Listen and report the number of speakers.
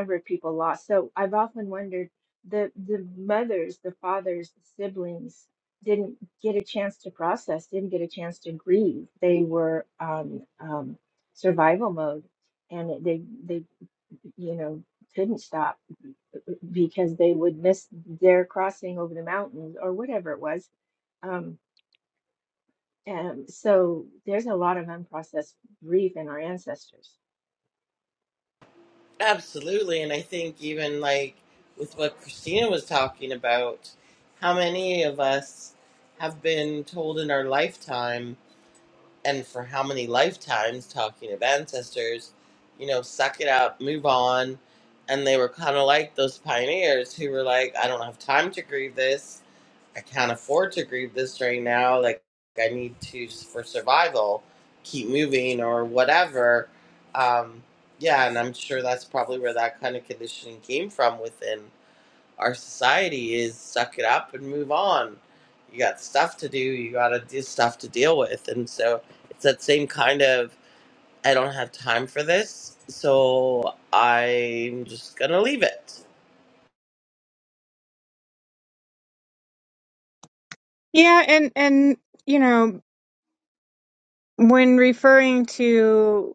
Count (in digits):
3